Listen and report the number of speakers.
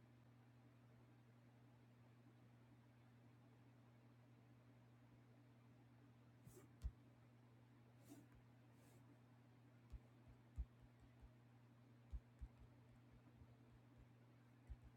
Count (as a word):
zero